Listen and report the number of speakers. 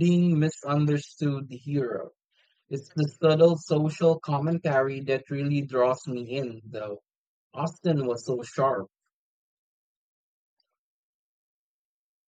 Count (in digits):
1